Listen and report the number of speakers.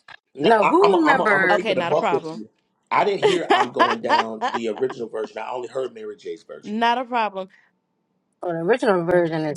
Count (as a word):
three